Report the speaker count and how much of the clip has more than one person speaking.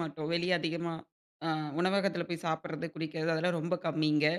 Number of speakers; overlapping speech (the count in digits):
1, no overlap